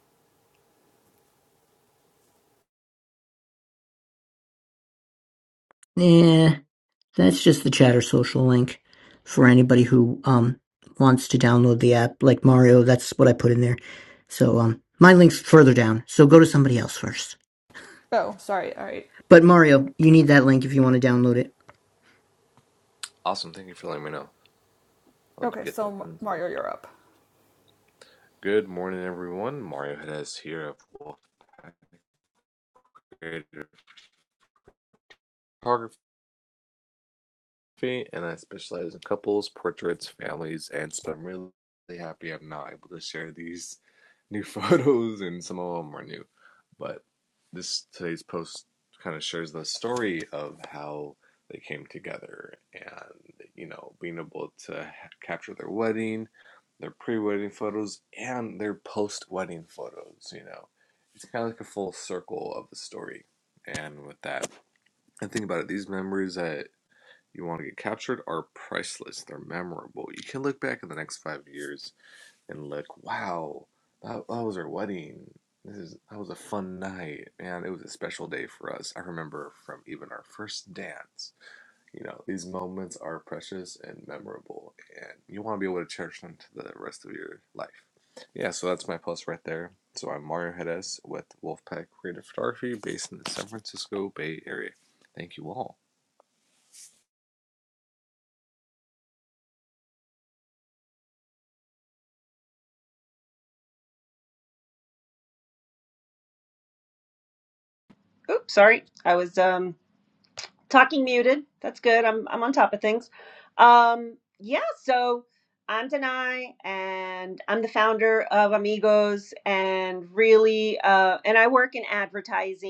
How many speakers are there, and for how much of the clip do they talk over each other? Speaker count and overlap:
four, about 1%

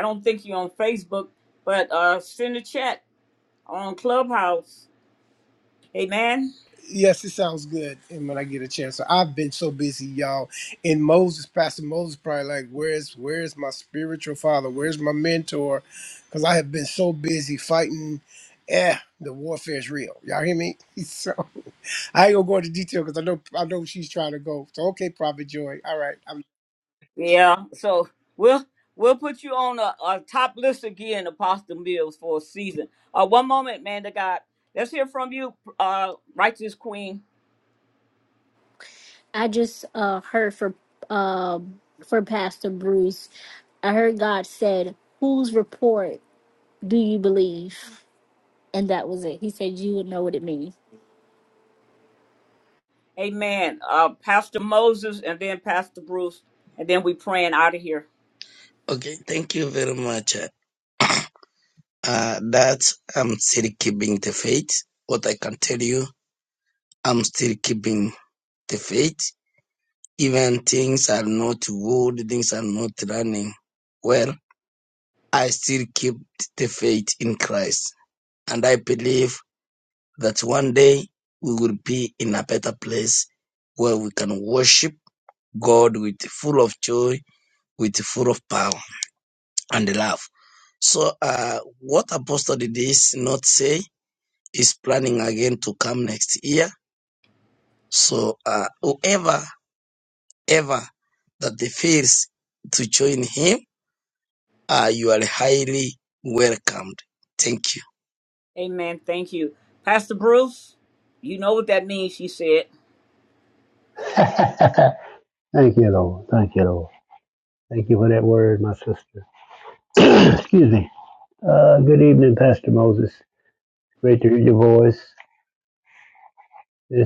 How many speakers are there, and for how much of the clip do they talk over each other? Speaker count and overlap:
five, no overlap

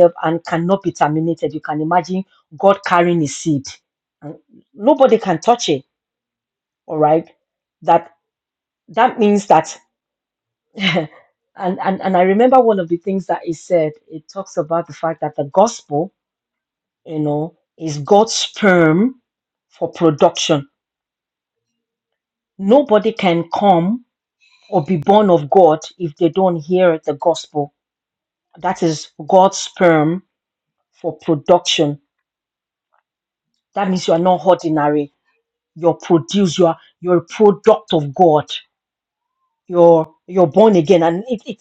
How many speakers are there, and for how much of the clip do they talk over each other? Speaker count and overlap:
one, no overlap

